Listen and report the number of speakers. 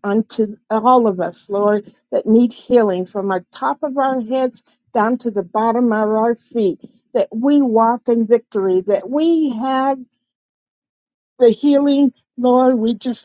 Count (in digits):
1